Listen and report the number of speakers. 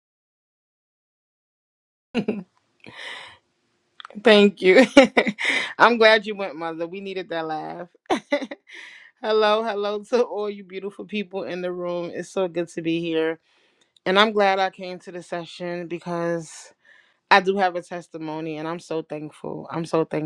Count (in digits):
1